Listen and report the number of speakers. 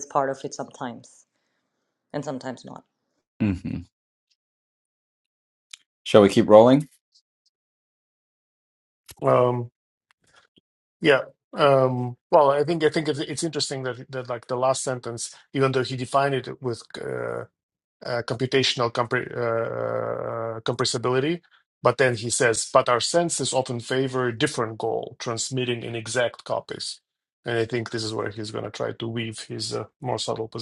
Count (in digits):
3